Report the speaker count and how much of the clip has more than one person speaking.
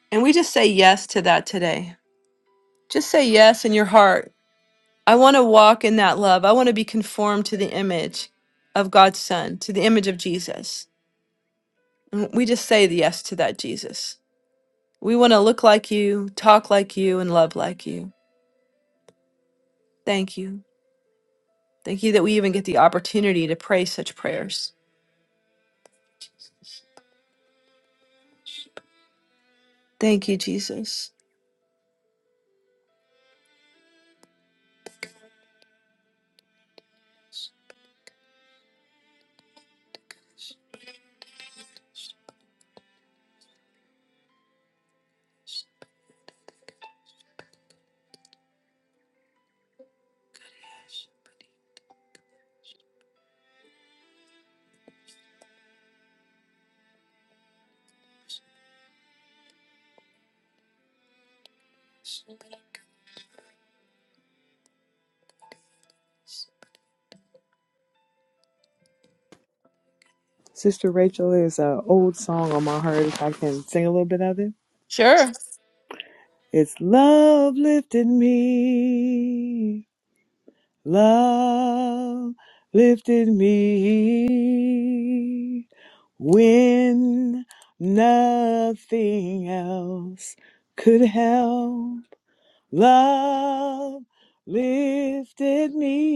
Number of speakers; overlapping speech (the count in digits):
2, no overlap